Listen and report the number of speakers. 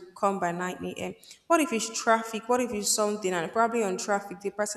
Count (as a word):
one